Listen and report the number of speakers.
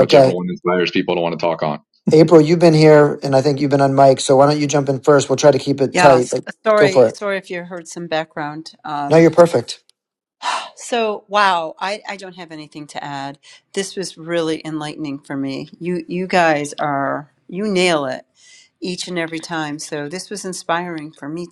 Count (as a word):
three